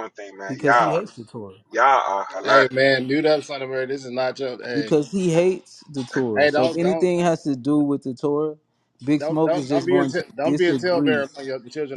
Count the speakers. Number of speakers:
3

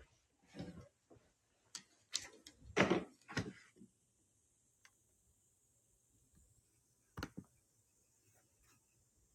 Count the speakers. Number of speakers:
0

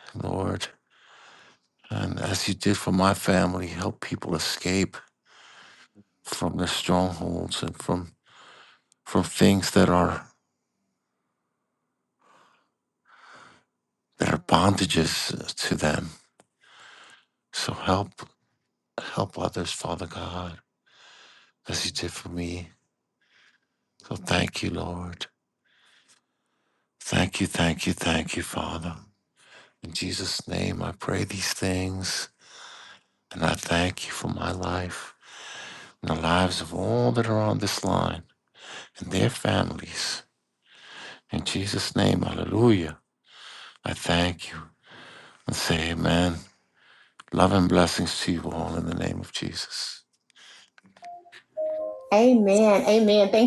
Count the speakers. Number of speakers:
2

